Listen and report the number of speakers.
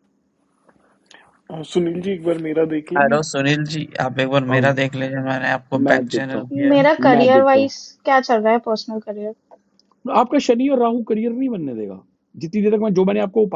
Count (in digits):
4